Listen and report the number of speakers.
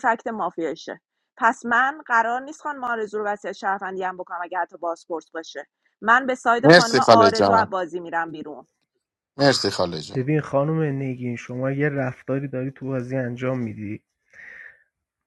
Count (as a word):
three